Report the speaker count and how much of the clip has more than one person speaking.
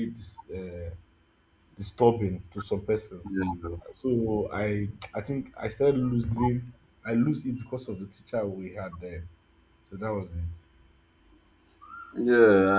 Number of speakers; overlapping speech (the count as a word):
two, no overlap